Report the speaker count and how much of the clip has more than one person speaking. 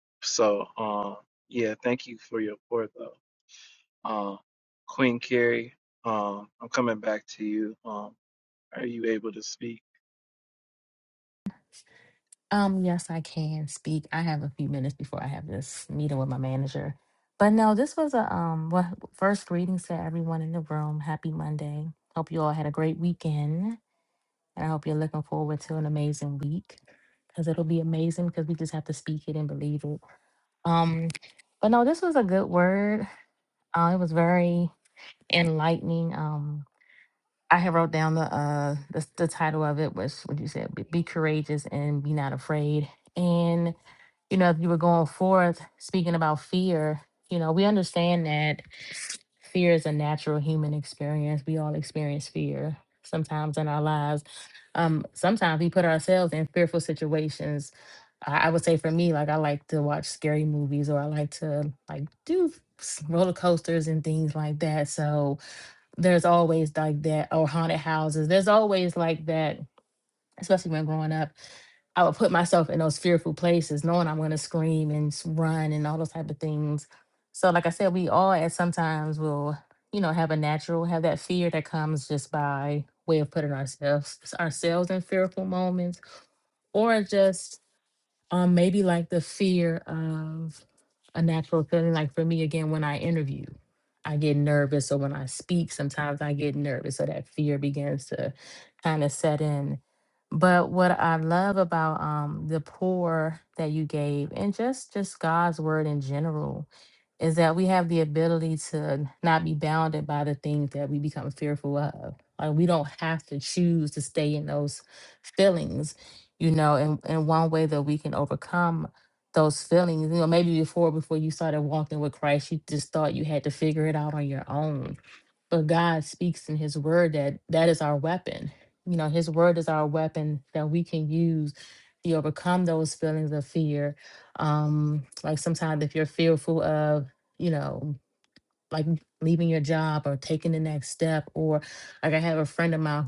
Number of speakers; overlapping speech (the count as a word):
two, no overlap